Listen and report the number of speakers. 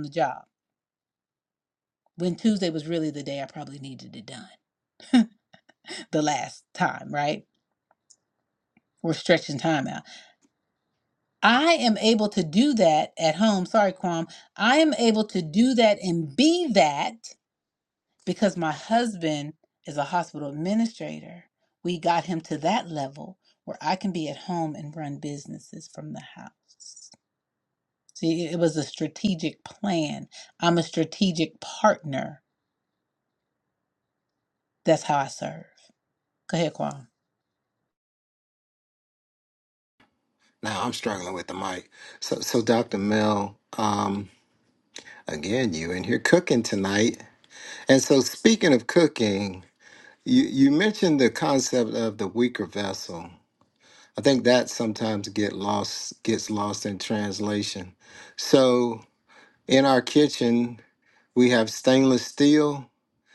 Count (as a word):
two